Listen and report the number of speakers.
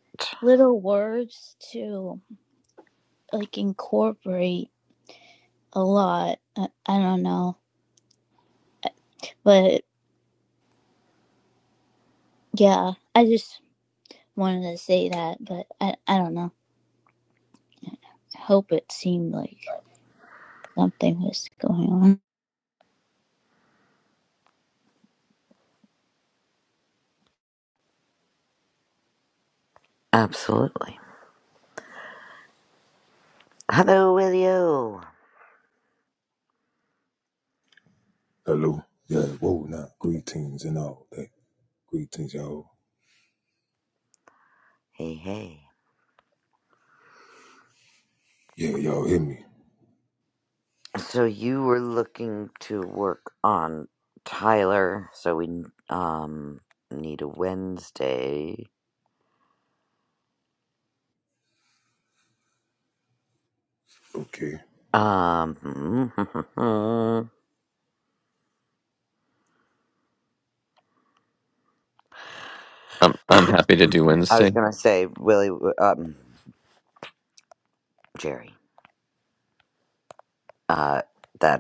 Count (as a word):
four